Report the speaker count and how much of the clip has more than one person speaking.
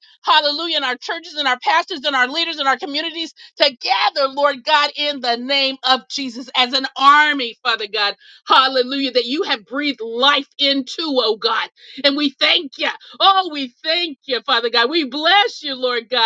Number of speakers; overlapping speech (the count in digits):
1, no overlap